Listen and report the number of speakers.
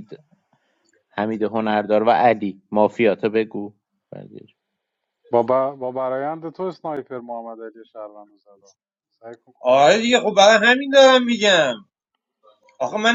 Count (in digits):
3